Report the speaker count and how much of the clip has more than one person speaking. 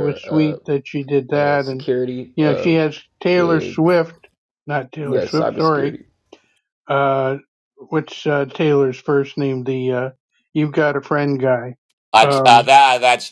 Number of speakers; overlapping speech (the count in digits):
3, about 25%